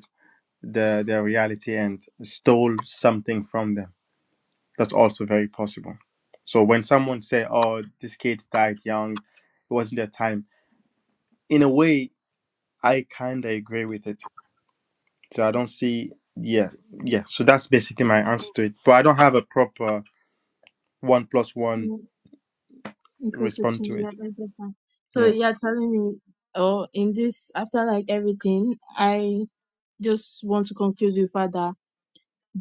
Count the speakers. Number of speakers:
2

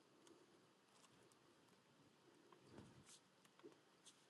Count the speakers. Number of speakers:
0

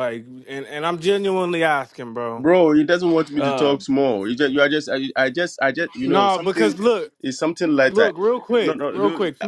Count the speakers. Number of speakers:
2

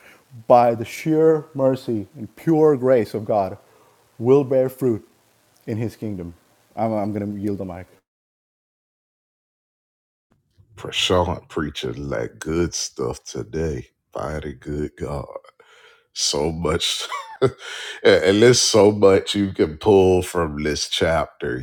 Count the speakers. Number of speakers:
2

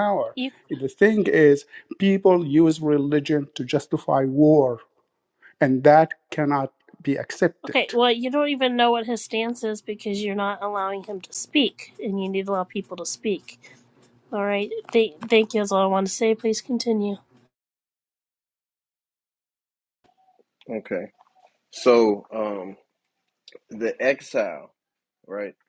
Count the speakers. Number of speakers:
3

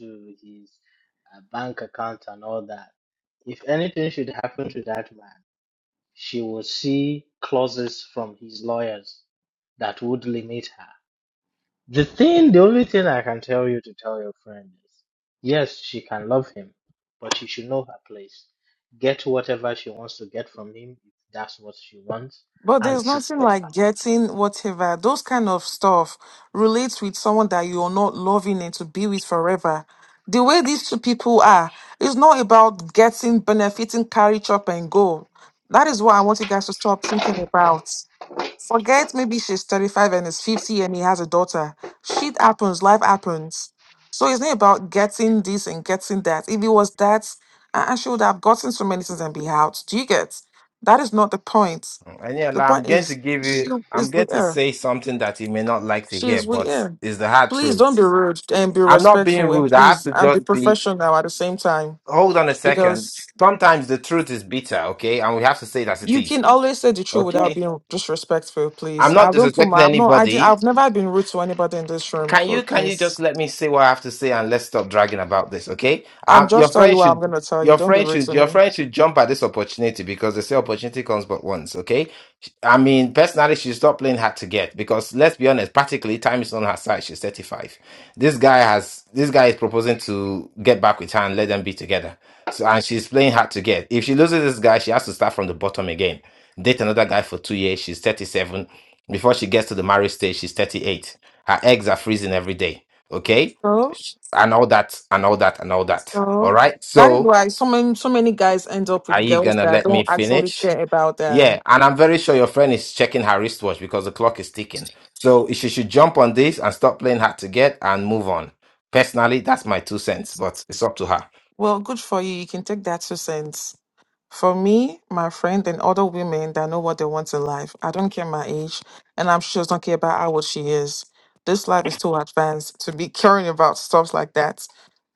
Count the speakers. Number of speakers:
3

